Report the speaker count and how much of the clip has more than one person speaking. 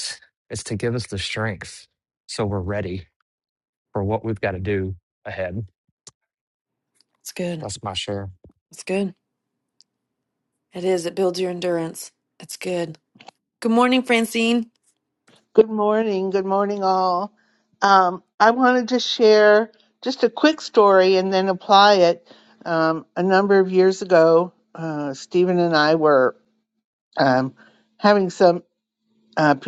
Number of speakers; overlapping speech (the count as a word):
three, under 1%